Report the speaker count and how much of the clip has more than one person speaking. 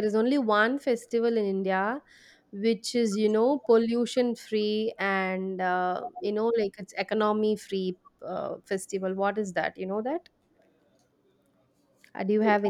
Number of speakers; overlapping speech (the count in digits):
1, no overlap